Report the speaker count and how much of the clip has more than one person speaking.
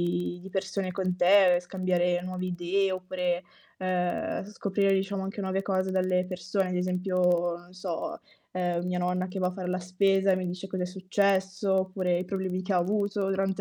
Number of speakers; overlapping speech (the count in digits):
1, no overlap